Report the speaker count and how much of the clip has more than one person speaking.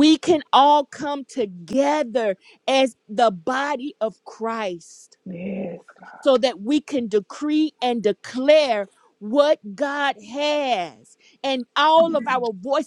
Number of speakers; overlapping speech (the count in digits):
2, about 3%